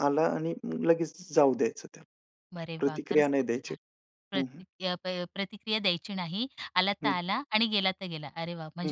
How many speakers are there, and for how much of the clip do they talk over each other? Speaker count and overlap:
two, about 16%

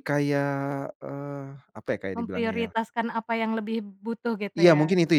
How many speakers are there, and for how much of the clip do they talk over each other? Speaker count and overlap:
two, about 18%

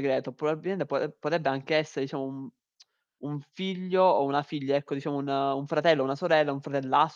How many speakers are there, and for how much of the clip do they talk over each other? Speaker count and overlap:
one, no overlap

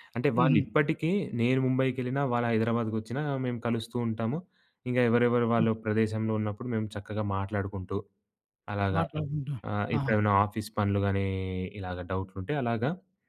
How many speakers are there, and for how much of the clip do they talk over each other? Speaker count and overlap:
two, about 6%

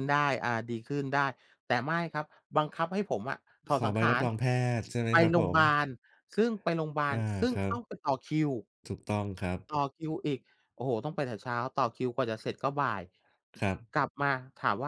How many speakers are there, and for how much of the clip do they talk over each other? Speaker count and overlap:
two, about 12%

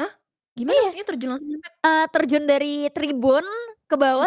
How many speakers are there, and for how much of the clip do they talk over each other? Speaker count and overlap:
two, about 8%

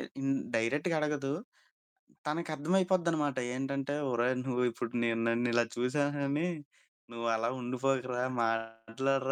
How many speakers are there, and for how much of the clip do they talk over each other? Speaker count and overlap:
one, no overlap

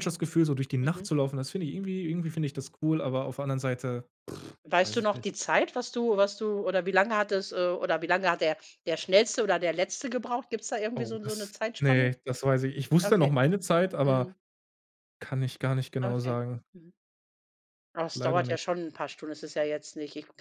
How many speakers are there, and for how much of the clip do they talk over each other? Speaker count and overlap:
two, about 14%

